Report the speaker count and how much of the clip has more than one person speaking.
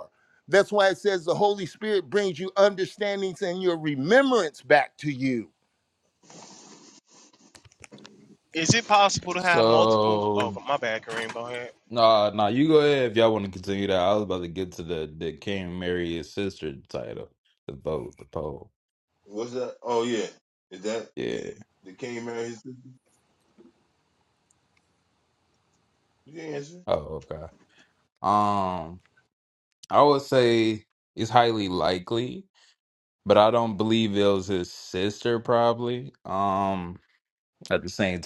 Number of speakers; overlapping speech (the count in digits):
4, about 2%